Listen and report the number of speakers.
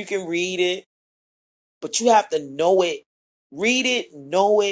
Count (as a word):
one